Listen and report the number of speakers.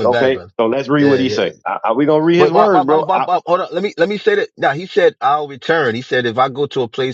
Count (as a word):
two